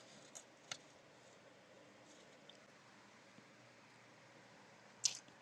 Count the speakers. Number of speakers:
0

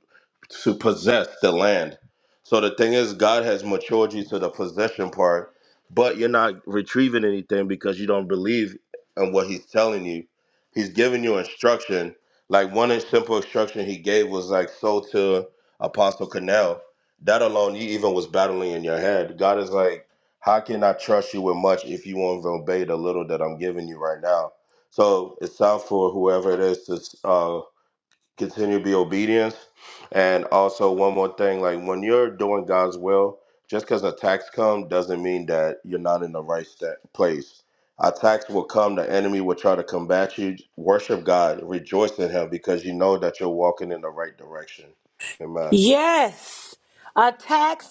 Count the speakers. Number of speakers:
2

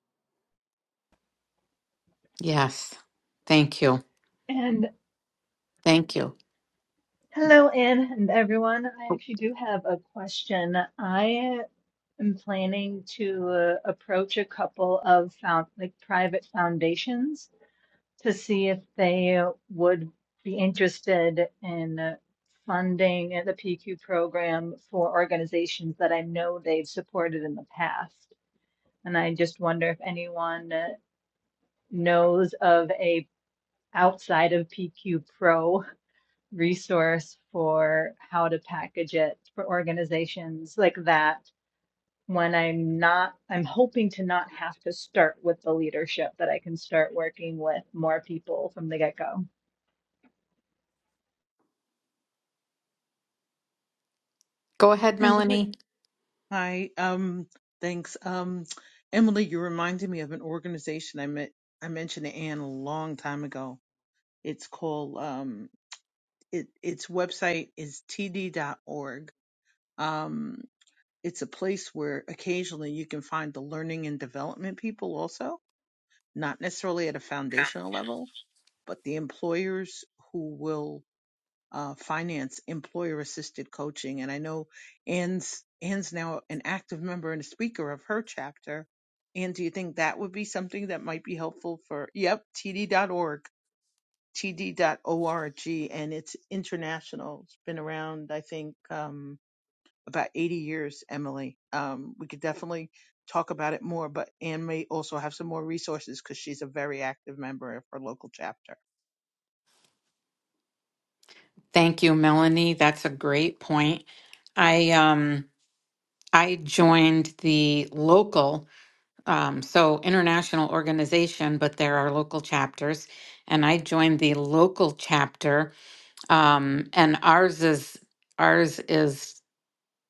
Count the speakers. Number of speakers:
3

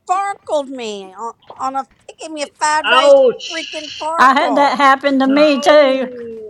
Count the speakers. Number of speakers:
3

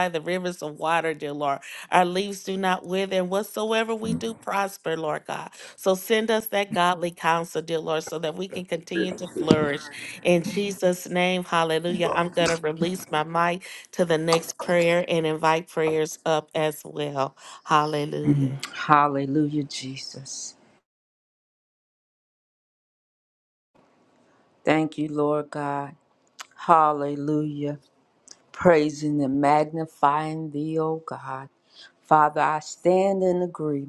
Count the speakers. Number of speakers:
2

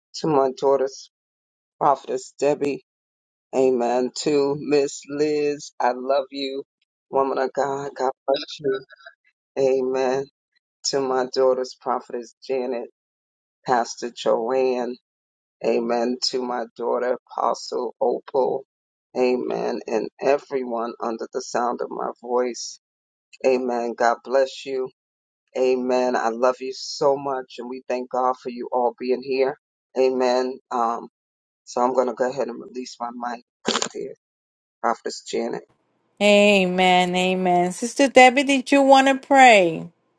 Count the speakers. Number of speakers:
2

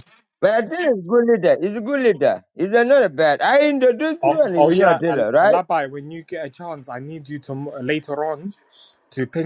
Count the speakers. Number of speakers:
2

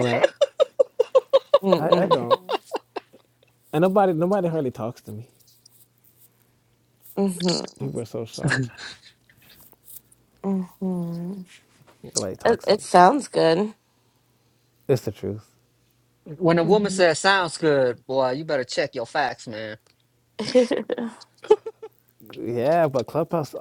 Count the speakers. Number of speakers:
3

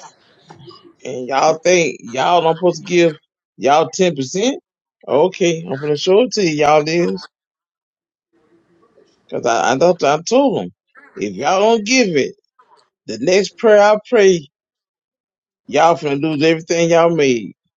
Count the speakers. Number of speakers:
1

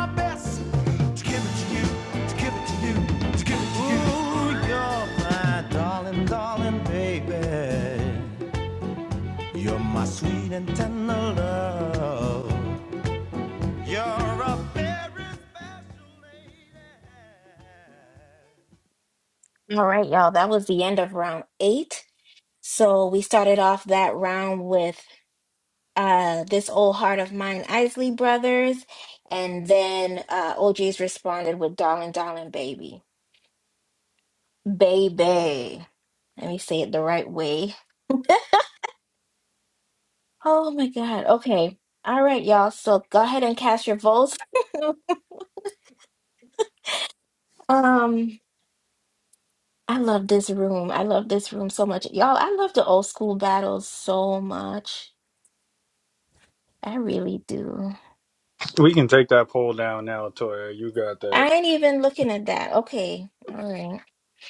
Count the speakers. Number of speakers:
3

